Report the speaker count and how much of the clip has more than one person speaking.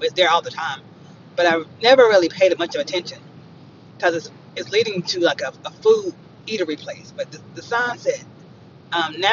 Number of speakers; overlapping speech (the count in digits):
1, no overlap